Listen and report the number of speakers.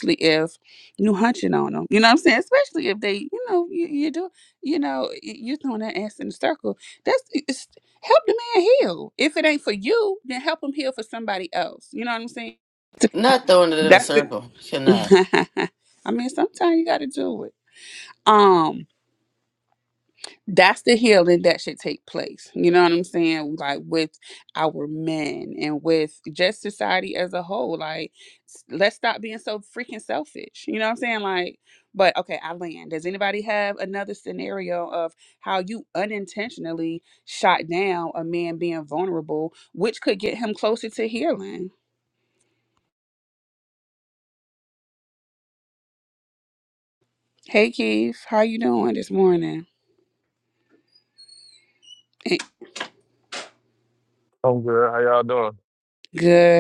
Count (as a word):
three